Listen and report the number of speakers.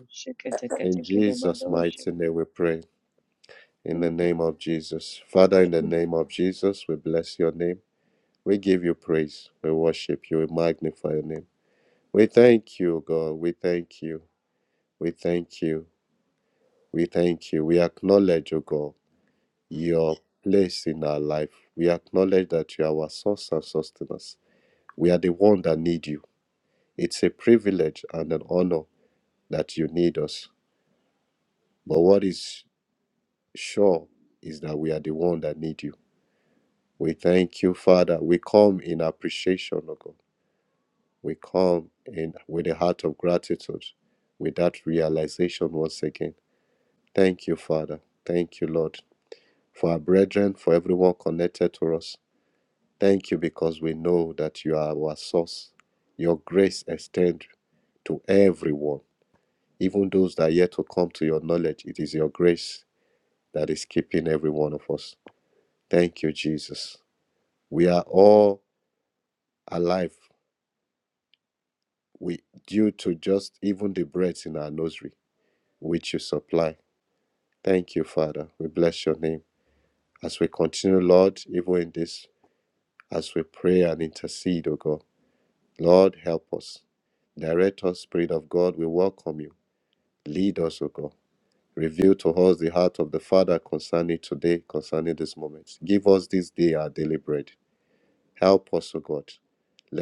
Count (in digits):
2